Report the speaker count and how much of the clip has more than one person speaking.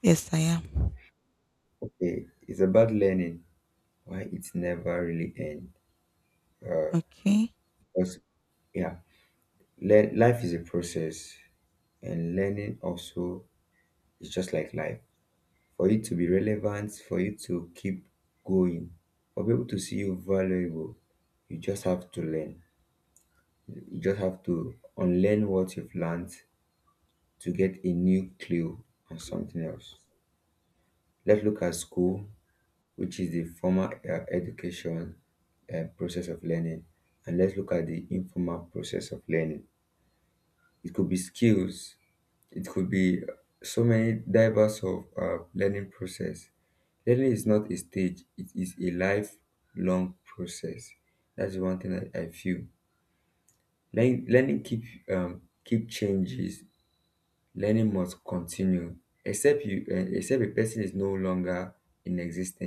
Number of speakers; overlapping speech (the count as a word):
two, under 1%